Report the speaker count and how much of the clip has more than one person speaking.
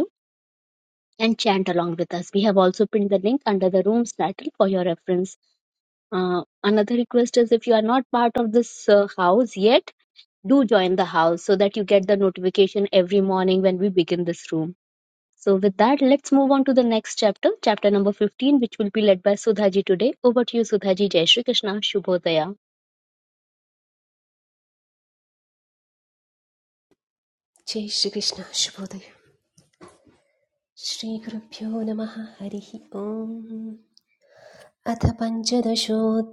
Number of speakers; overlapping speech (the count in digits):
2, no overlap